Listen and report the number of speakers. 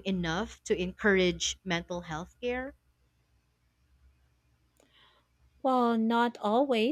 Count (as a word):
two